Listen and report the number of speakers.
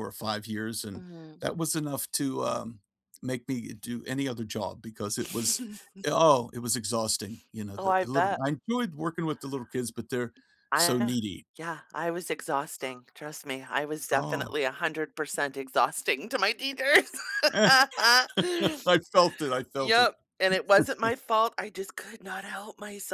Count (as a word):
two